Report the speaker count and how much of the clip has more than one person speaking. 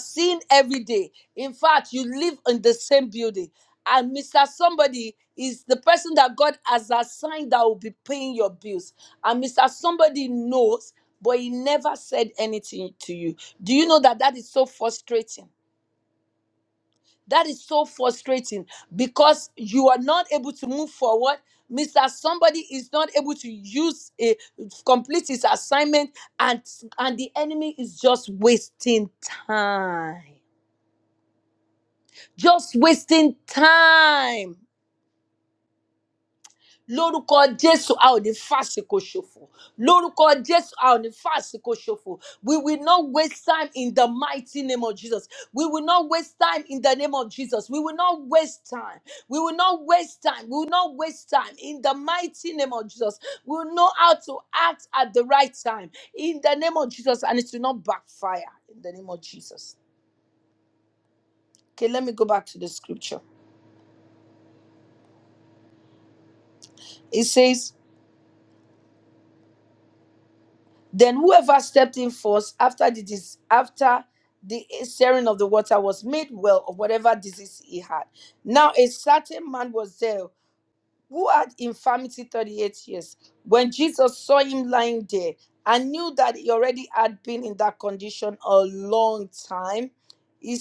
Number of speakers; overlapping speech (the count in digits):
1, no overlap